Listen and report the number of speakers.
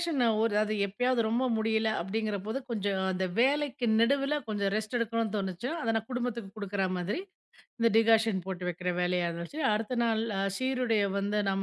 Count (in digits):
1